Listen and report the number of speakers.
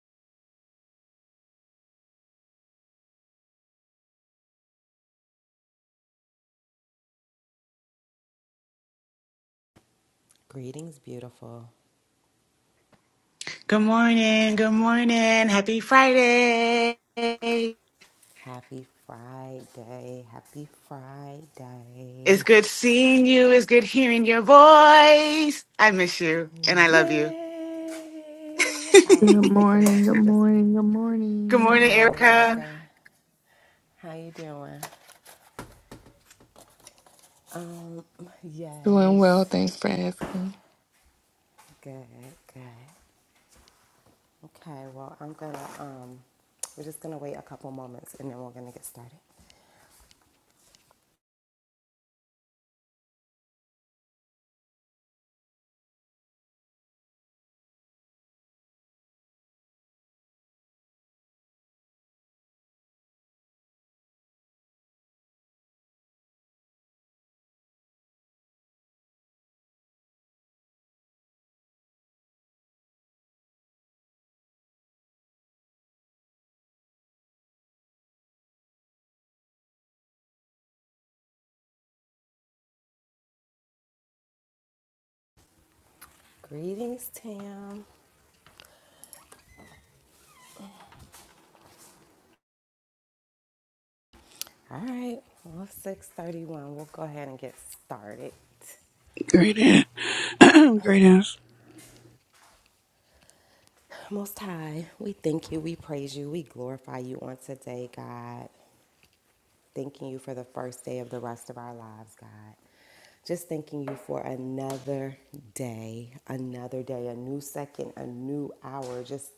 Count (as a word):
four